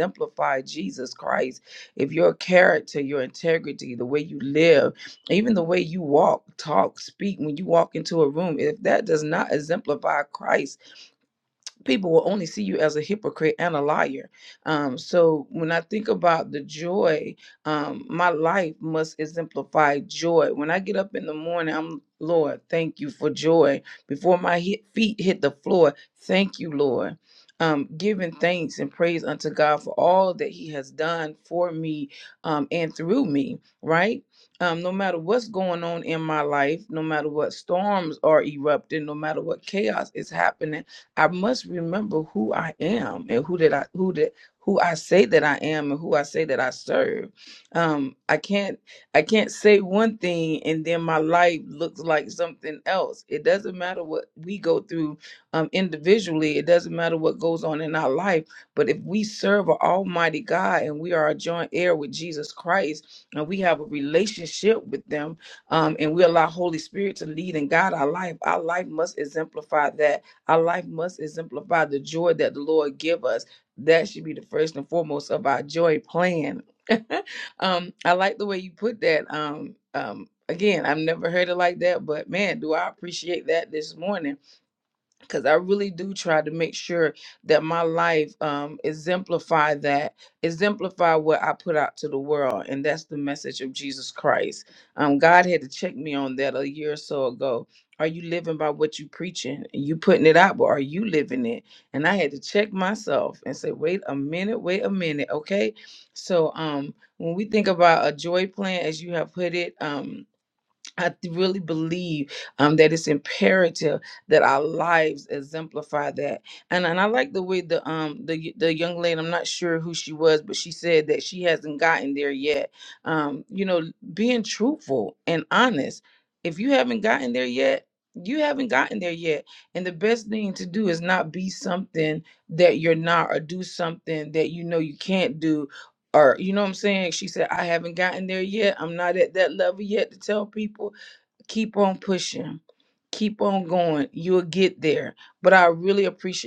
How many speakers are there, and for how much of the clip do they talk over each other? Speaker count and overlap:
one, no overlap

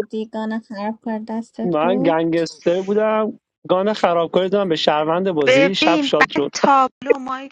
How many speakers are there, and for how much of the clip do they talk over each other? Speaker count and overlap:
three, about 21%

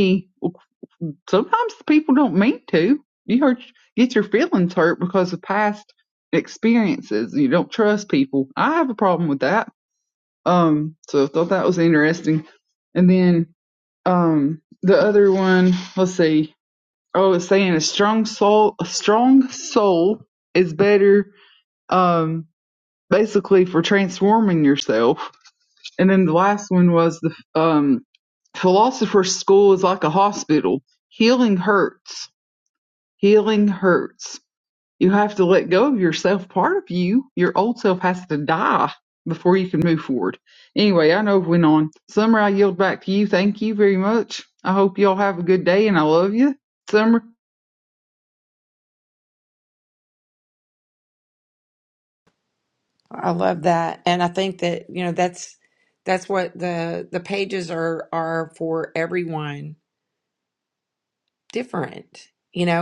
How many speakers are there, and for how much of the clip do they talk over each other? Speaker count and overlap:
two, no overlap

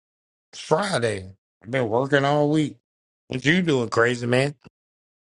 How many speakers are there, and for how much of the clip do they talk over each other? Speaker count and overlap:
one, no overlap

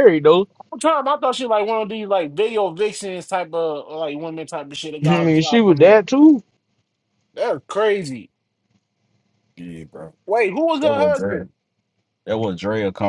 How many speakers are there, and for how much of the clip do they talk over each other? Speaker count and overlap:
three, about 12%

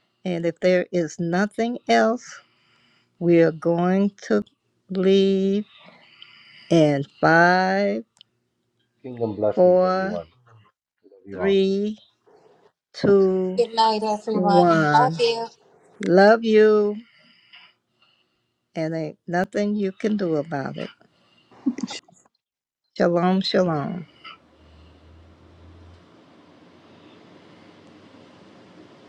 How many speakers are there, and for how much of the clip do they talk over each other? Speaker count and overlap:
three, about 7%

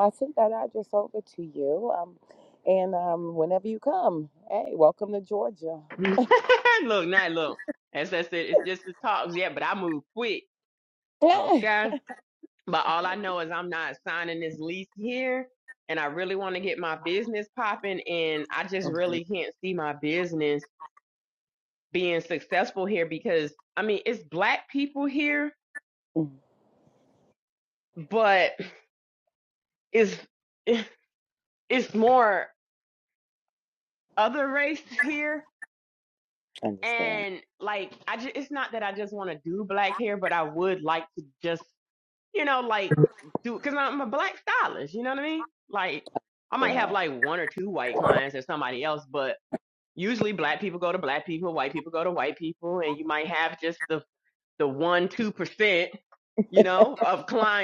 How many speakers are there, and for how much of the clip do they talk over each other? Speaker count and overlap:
two, about 2%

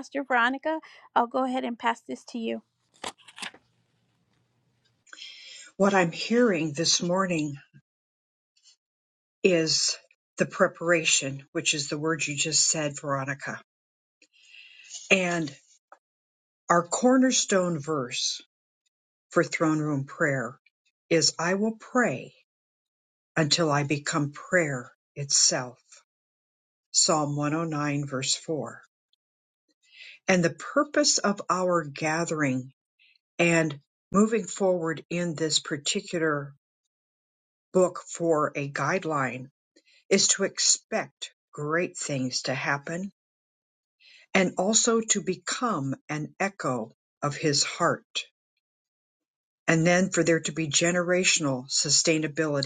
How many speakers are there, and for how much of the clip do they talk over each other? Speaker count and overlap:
two, no overlap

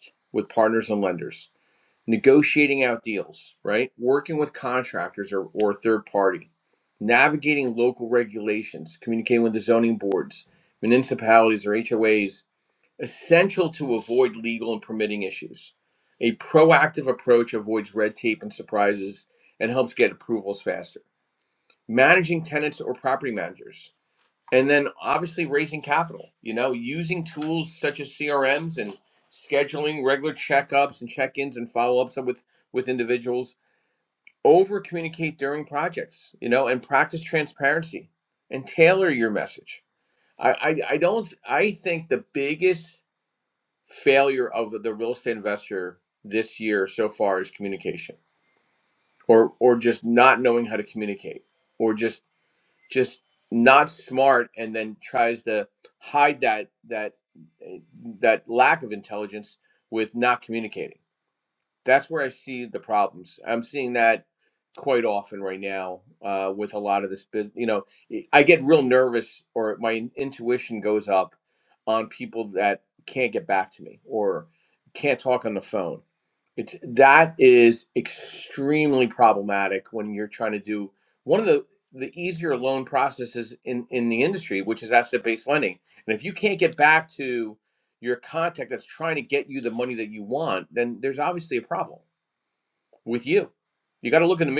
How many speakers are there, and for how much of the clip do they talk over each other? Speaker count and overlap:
one, no overlap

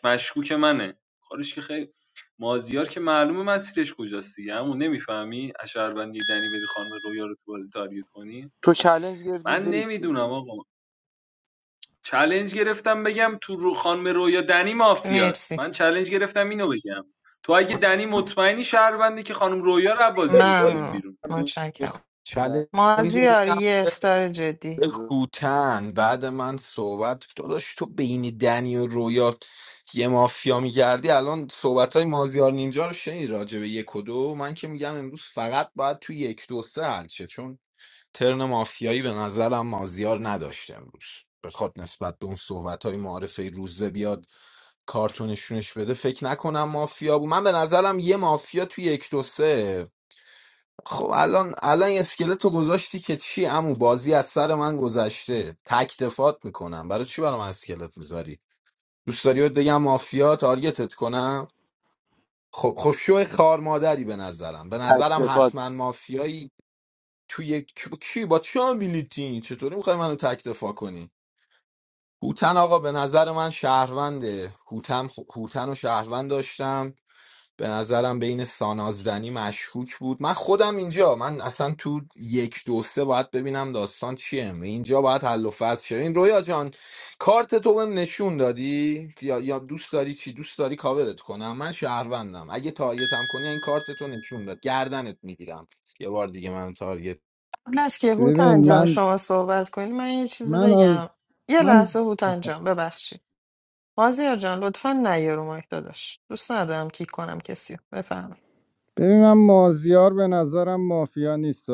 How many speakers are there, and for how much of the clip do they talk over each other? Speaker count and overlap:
five, about 5%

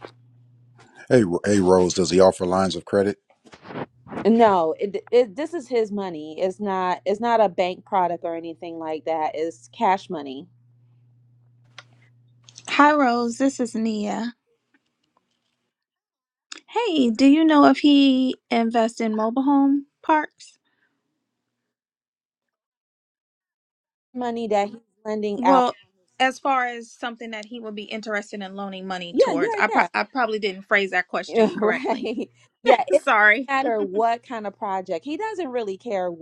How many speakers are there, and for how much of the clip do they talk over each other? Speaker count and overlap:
three, about 5%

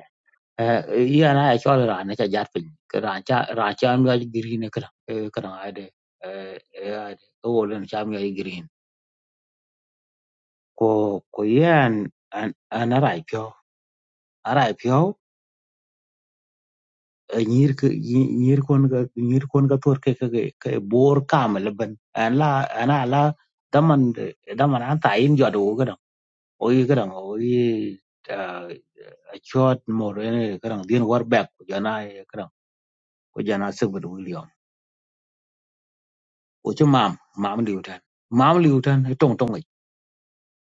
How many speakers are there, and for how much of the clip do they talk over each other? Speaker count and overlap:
one, no overlap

